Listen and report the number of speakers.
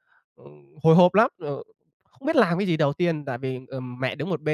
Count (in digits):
1